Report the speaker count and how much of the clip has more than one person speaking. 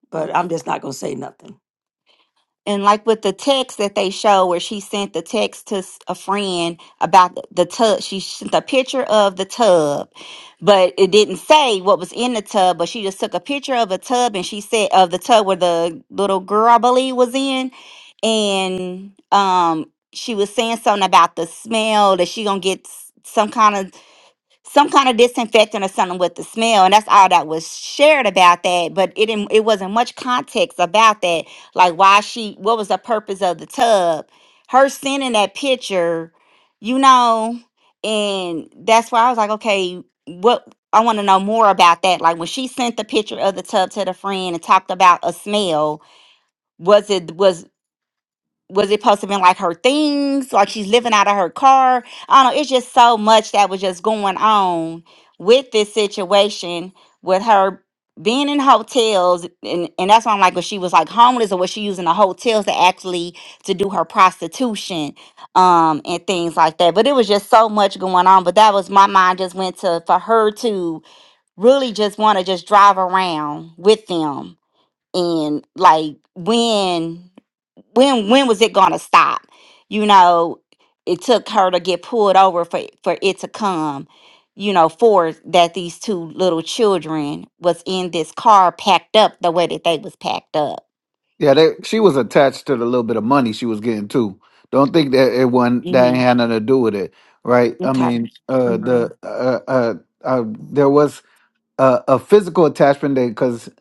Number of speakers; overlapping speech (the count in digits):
3, about 1%